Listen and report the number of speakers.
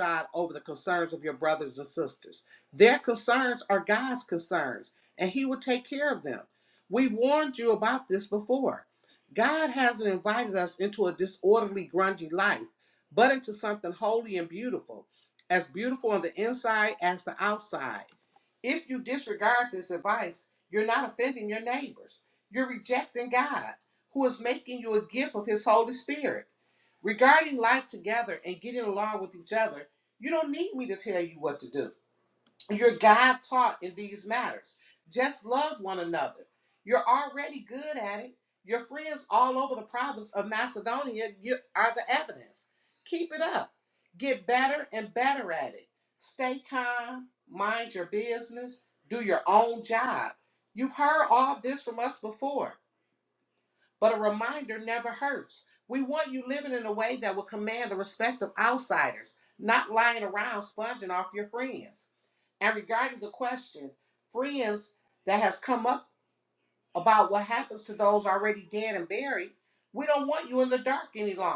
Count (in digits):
1